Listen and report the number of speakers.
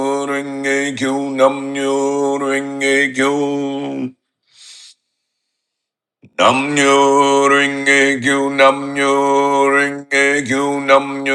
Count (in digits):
1